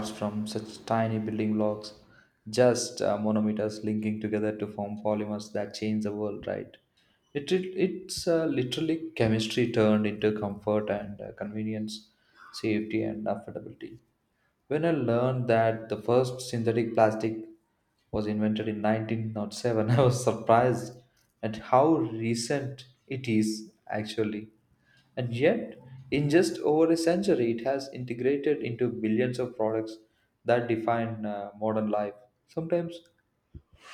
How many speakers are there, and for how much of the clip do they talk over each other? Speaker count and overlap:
one, no overlap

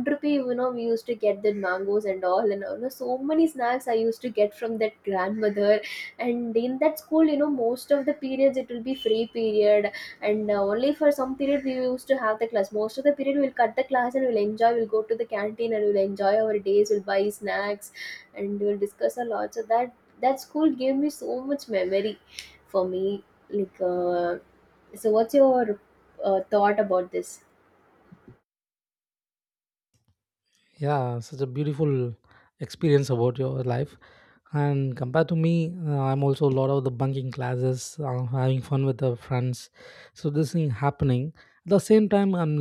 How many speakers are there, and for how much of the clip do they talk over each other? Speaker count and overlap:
two, no overlap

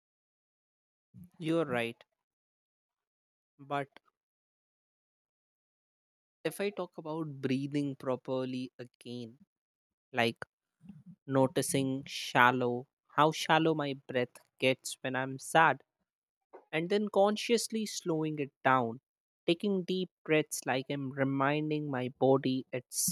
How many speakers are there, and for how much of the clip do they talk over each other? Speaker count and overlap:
one, no overlap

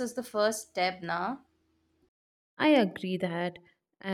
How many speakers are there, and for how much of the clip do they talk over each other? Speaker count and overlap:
two, no overlap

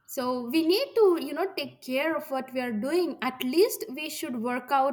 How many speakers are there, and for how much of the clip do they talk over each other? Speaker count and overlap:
one, no overlap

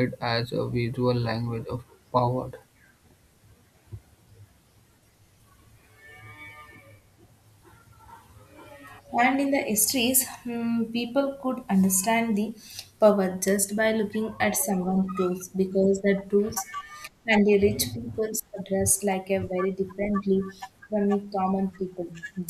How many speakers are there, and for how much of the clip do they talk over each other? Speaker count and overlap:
two, no overlap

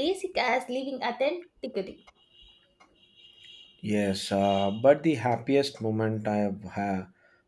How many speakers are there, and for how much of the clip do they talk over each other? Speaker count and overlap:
two, no overlap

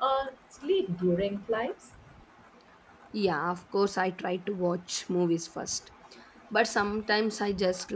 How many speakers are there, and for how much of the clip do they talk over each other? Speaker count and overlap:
two, no overlap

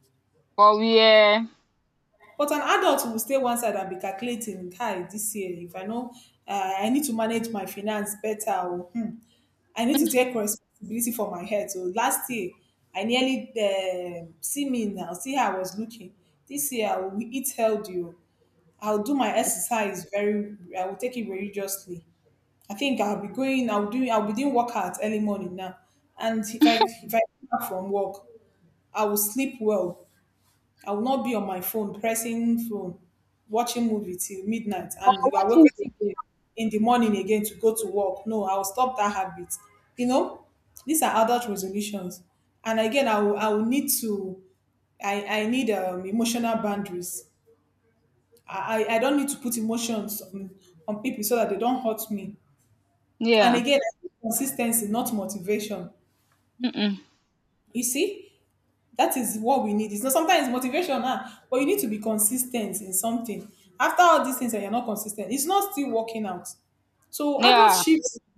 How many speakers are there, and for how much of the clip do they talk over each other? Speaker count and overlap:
two, about 2%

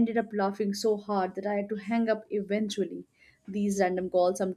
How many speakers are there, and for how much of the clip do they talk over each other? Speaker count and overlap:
one, no overlap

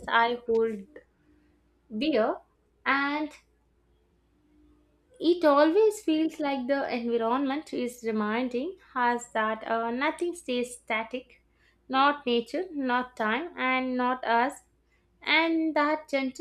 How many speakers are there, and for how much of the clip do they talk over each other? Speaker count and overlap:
one, no overlap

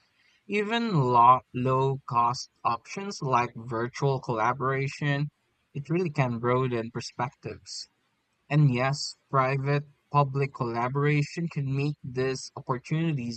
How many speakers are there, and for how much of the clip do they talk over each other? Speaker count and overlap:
one, no overlap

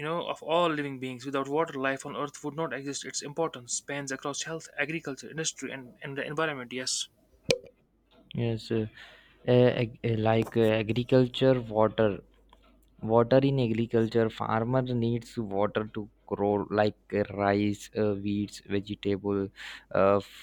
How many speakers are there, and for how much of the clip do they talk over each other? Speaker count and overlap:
two, no overlap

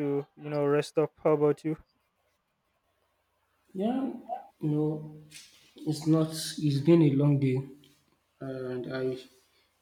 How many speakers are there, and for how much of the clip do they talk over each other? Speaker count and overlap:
two, no overlap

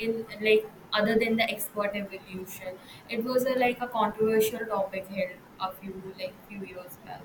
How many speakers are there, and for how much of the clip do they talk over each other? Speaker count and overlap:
one, no overlap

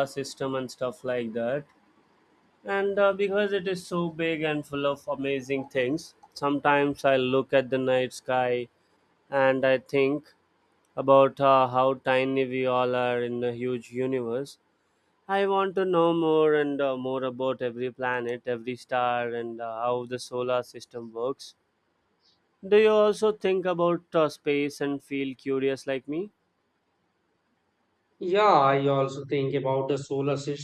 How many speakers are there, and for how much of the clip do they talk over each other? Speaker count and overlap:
two, no overlap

